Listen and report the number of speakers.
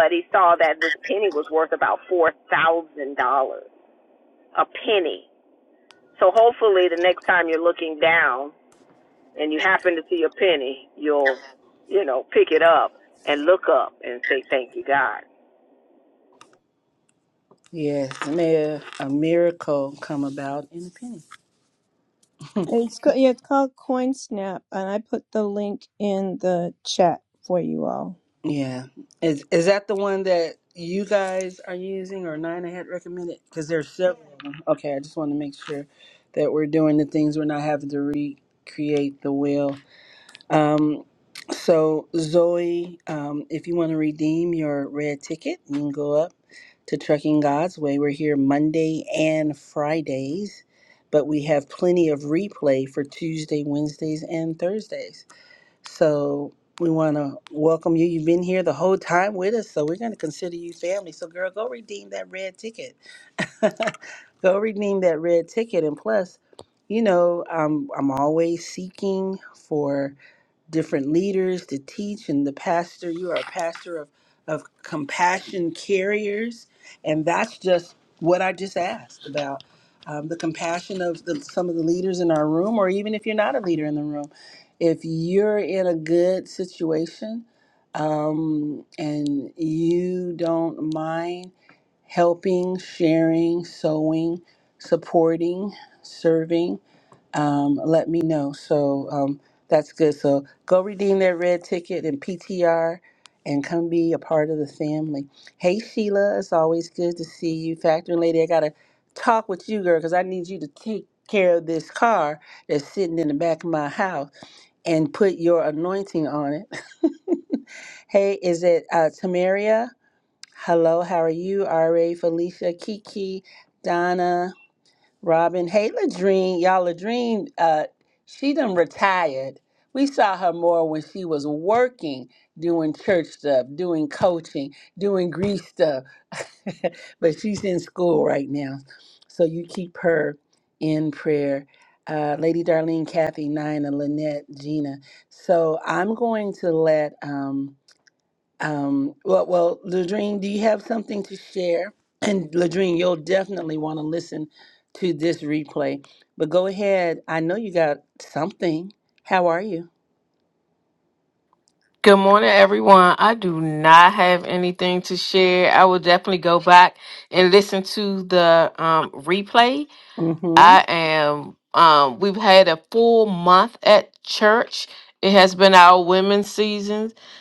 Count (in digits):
4